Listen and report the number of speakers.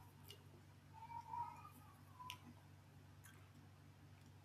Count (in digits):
0